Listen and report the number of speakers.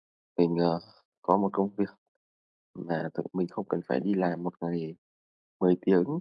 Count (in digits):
1